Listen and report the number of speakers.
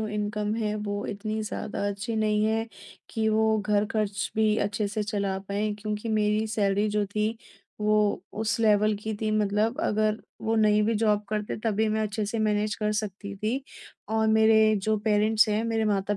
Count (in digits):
1